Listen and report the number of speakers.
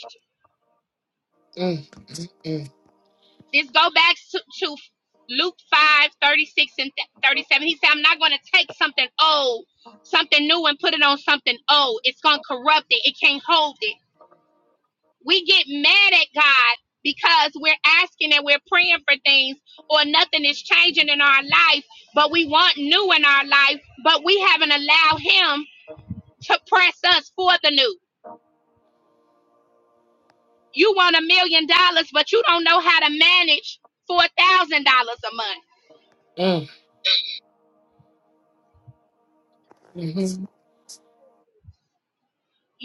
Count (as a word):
two